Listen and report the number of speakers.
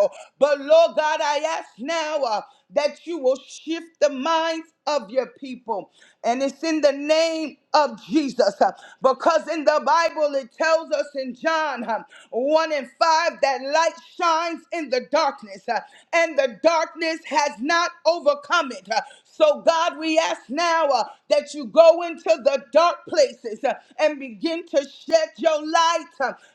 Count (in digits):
1